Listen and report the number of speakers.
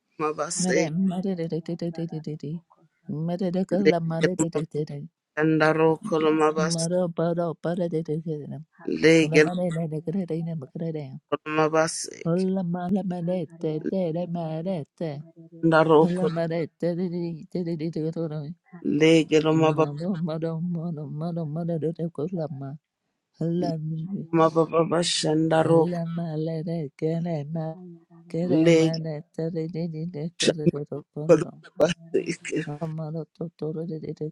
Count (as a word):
three